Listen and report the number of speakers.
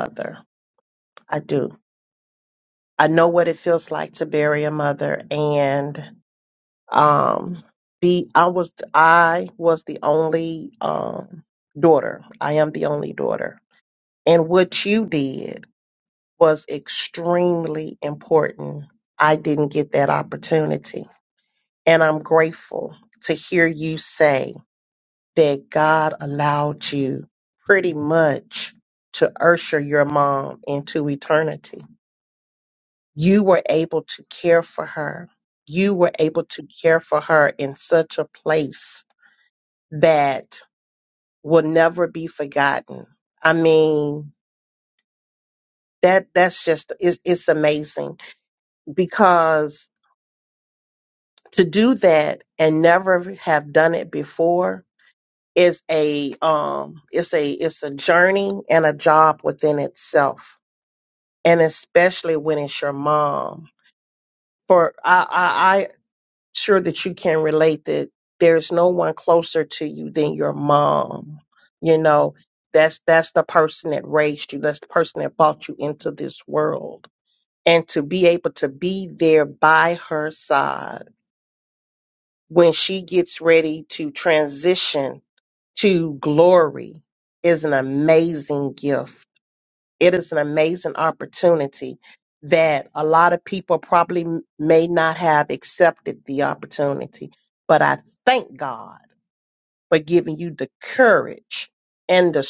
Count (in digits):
1